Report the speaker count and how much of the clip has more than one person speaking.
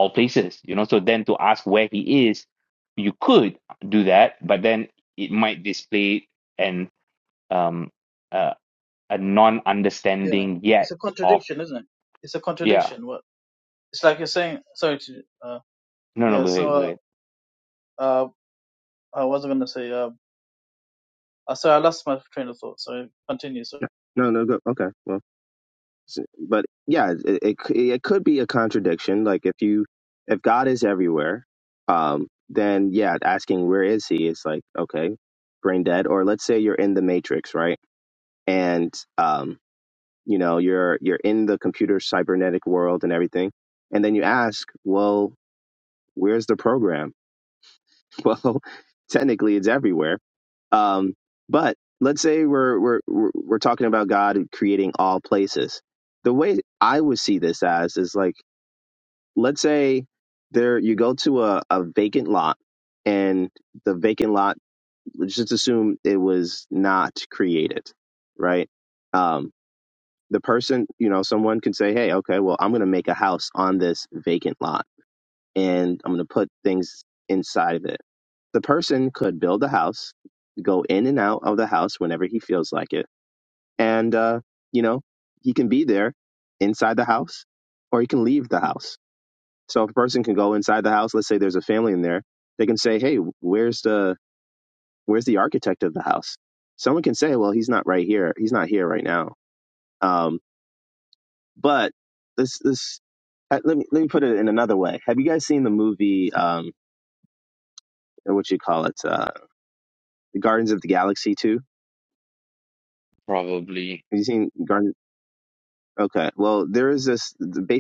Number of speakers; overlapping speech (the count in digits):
3, about 1%